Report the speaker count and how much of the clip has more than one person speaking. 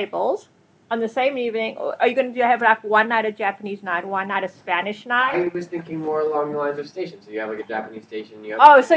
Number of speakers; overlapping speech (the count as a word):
two, about 8%